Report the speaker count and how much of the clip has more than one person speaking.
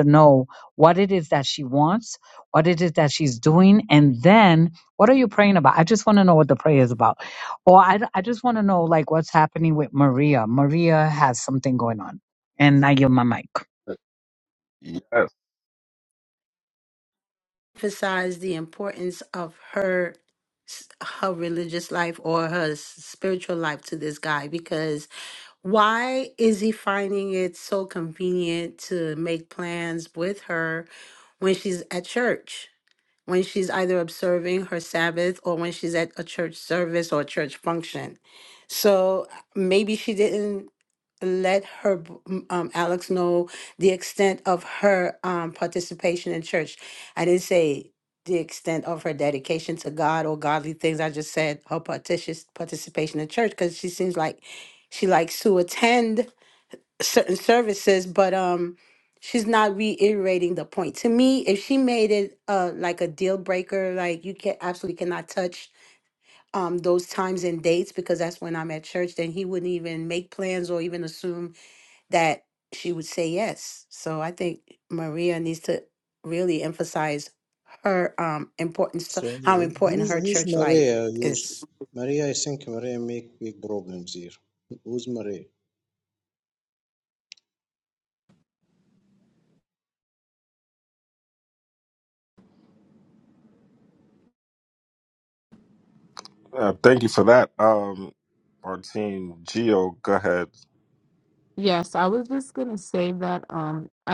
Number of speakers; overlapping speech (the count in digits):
5, about 1%